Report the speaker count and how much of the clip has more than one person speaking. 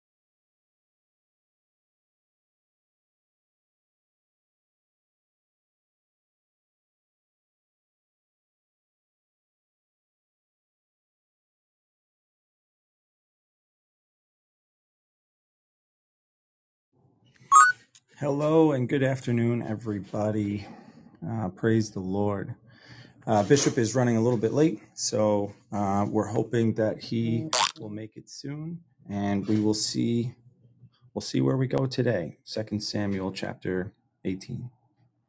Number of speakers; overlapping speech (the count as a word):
one, no overlap